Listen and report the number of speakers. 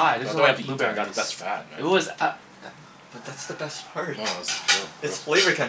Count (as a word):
three